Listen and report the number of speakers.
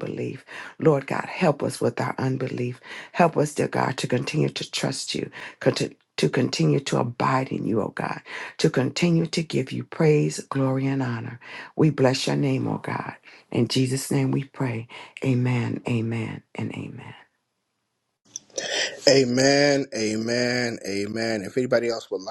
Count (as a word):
two